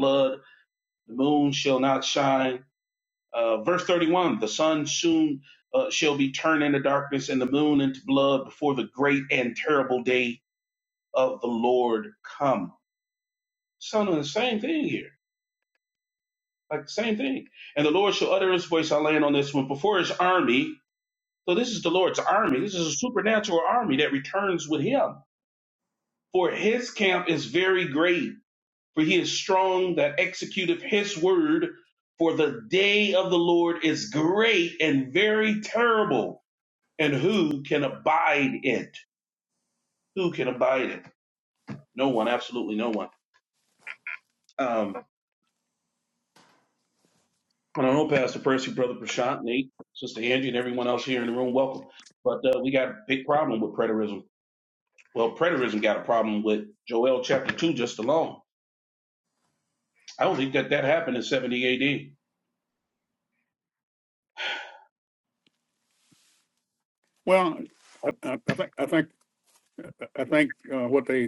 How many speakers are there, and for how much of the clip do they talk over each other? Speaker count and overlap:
2, no overlap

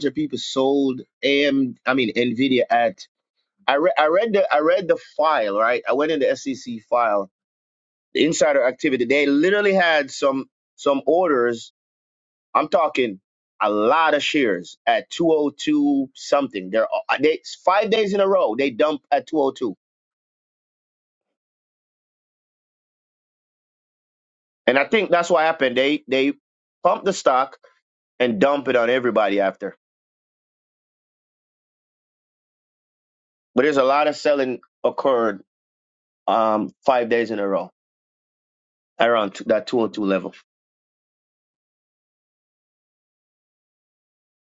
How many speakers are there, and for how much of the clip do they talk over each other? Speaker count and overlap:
1, no overlap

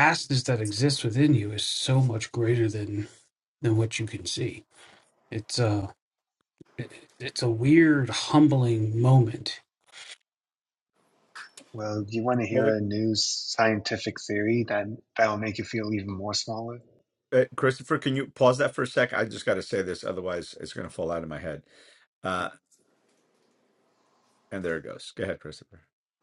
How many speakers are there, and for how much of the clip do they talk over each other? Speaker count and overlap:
3, about 1%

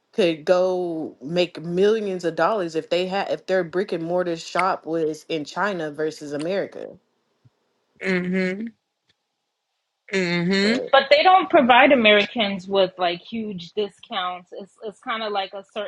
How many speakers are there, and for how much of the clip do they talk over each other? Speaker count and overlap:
3, about 2%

